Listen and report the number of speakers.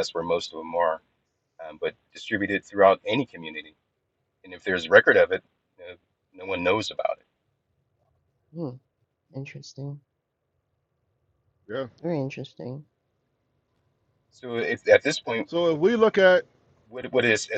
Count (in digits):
3